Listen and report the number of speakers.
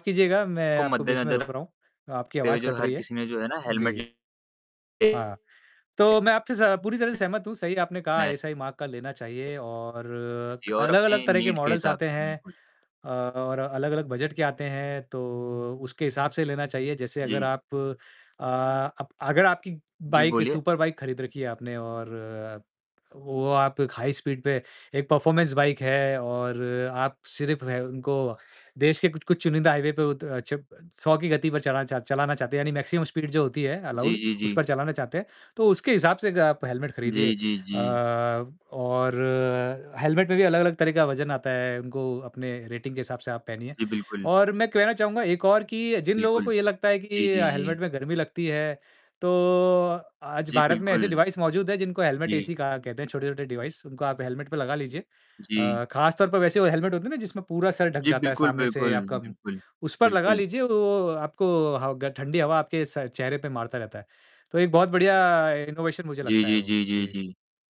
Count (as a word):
two